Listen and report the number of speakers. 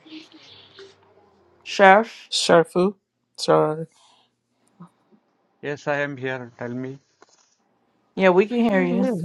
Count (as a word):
three